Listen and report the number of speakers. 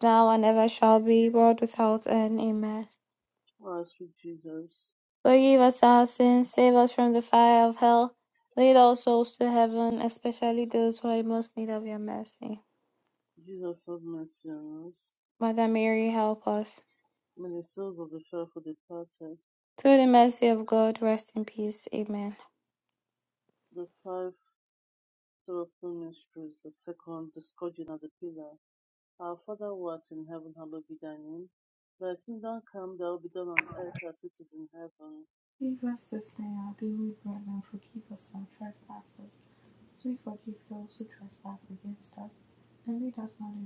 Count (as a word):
three